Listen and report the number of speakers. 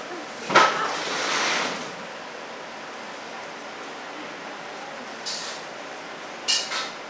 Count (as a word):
one